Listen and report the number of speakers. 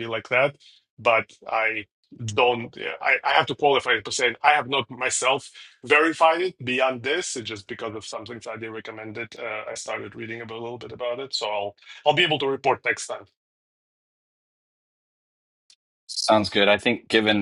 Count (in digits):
2